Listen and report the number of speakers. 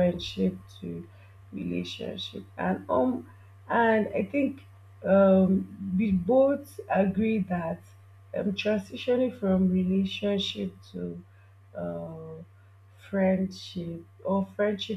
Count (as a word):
one